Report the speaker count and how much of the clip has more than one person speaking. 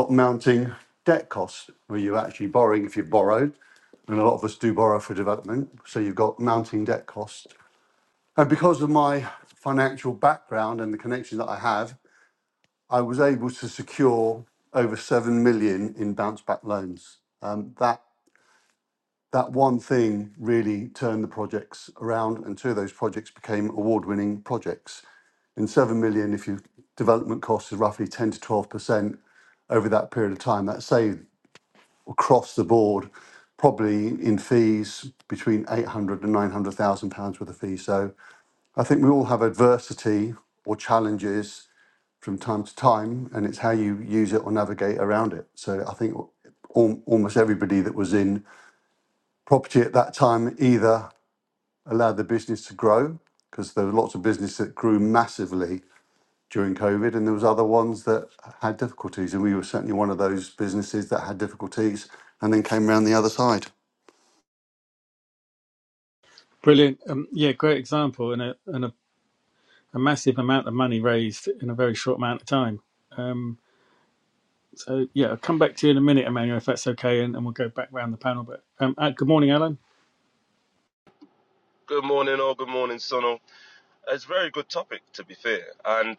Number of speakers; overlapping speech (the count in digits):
3, no overlap